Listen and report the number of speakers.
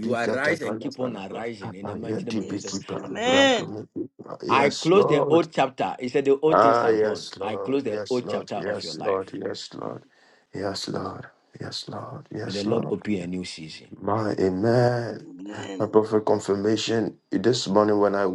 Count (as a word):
three